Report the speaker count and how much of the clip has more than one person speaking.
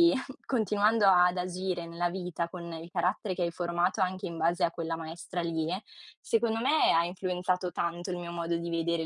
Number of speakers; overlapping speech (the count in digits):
1, no overlap